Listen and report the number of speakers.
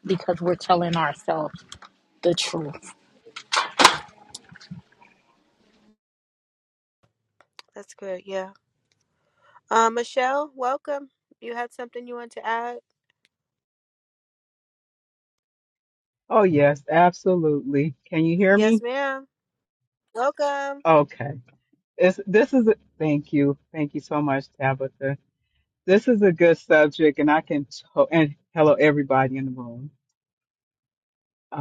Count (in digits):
3